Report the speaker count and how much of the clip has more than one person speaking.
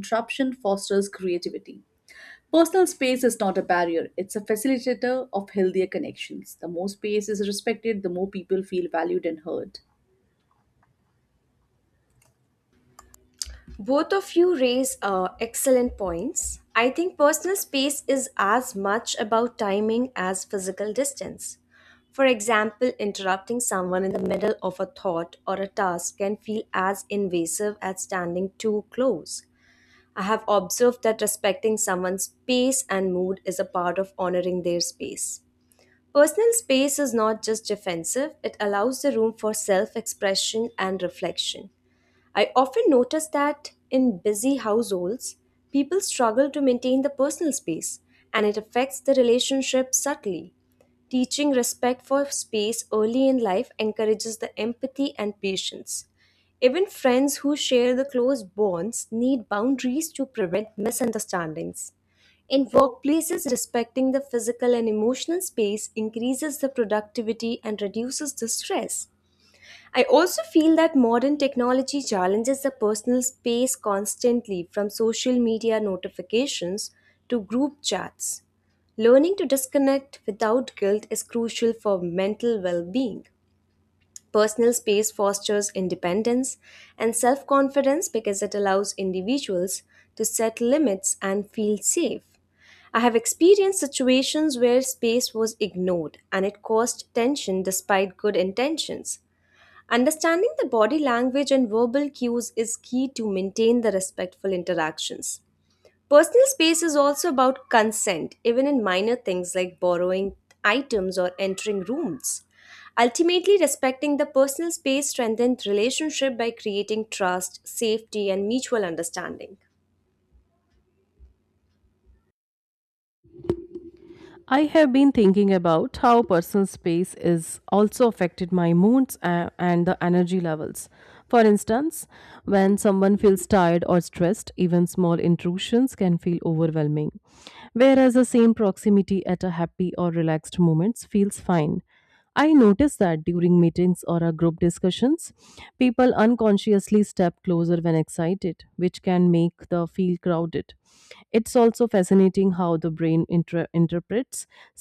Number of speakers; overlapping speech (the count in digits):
3, no overlap